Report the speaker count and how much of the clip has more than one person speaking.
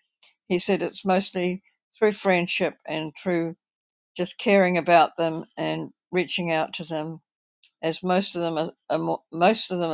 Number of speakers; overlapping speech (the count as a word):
one, no overlap